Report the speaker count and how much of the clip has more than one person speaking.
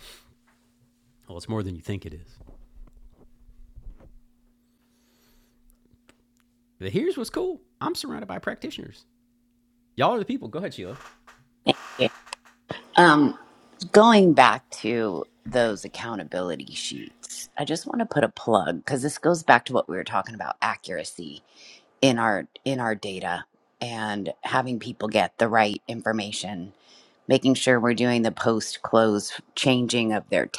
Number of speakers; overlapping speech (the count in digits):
2, no overlap